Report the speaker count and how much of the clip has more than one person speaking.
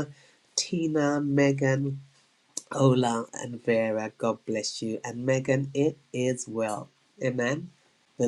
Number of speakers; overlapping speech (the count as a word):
one, no overlap